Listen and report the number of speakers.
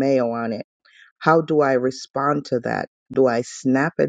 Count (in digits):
1